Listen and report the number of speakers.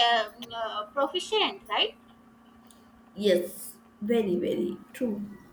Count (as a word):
two